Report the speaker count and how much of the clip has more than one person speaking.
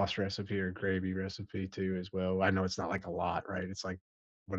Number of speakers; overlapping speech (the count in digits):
1, no overlap